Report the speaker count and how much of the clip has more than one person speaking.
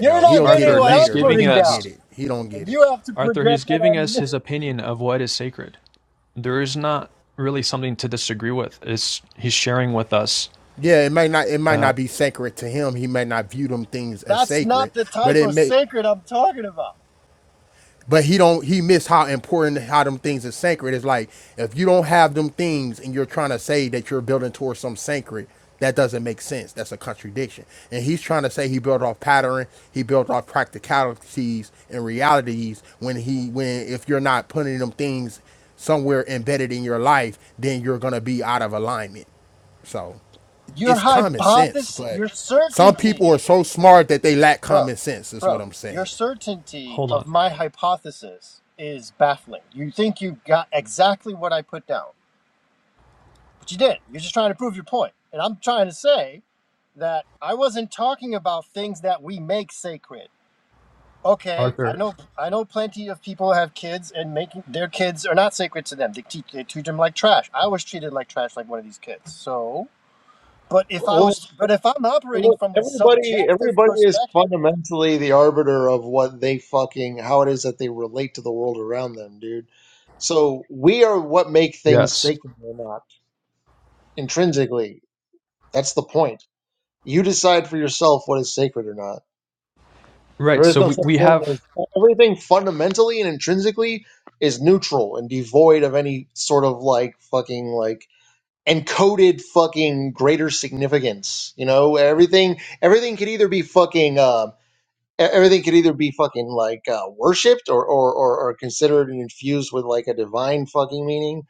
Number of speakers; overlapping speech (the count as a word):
four, about 10%